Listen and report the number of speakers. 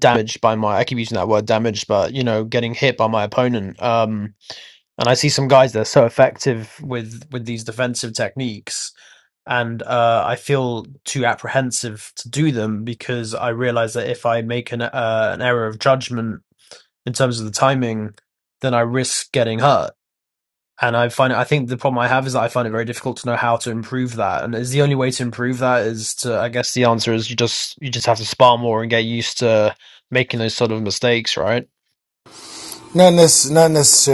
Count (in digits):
2